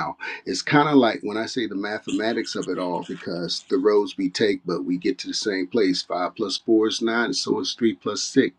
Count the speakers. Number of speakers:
1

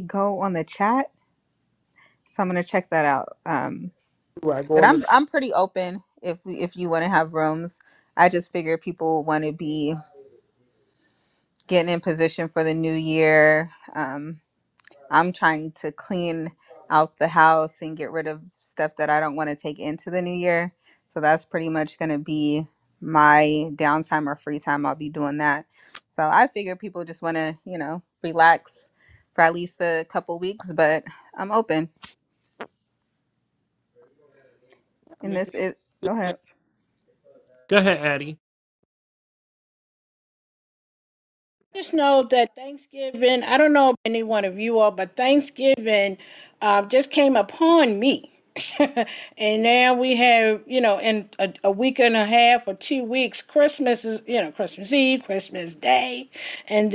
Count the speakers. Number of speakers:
3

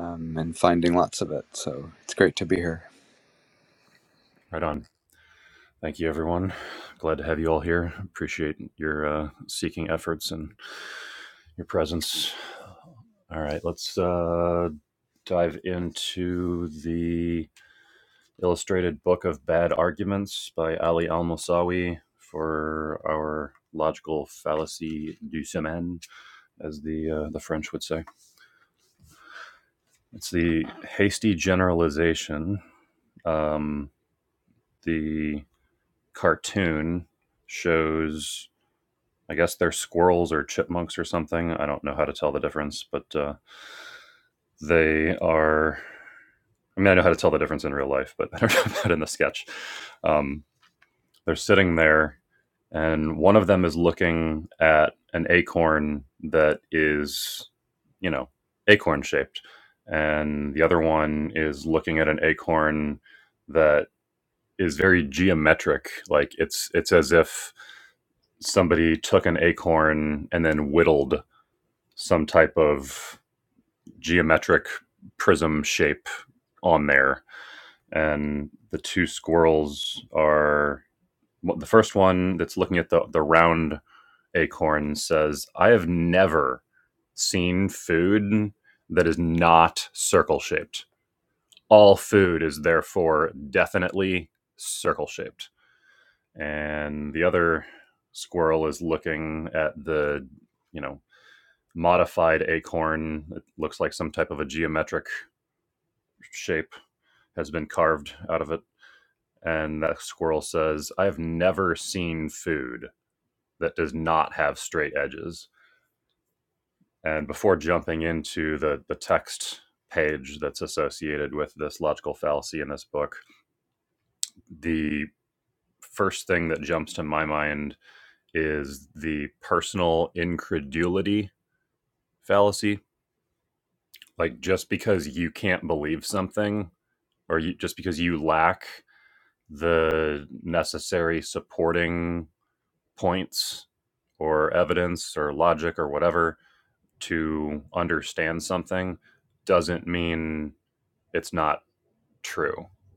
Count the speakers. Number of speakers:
2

